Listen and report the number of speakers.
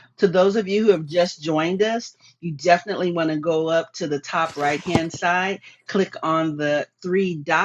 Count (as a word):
one